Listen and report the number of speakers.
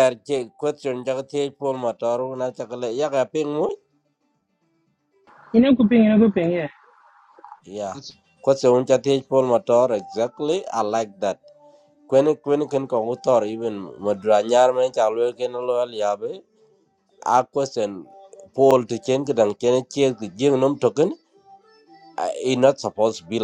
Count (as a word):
two